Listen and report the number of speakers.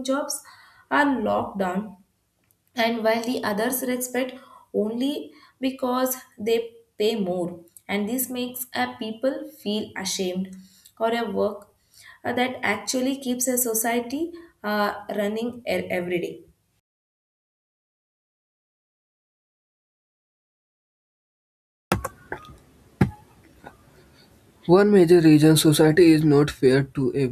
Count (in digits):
2